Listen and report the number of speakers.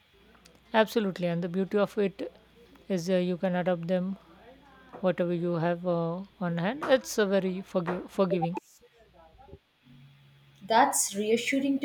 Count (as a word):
two